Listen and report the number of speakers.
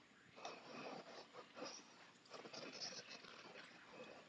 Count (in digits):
0